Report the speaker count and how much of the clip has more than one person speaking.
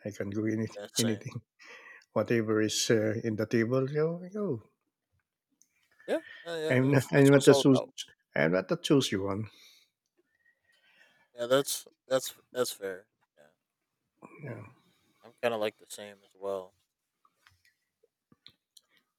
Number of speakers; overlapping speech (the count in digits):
2, about 8%